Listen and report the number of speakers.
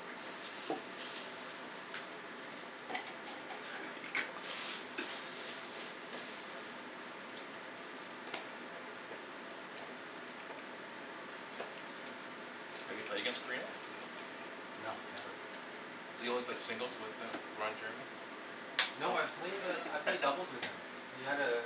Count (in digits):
2